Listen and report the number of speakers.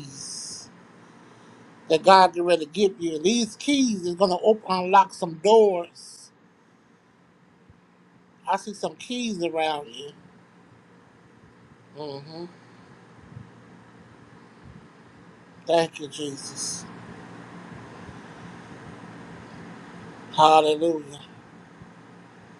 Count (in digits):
1